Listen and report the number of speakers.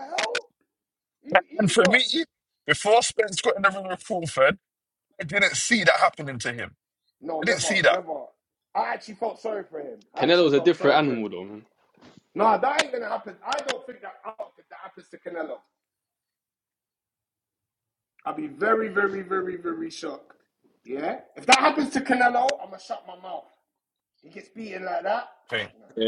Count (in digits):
3